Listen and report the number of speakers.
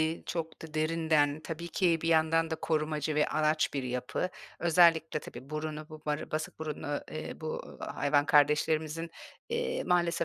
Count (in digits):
1